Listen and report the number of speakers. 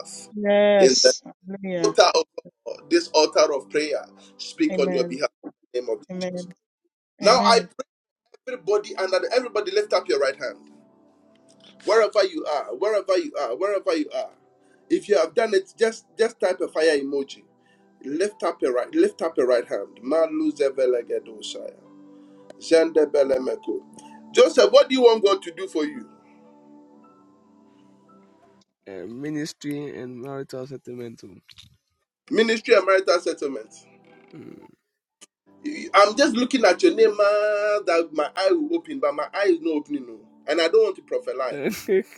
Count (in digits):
3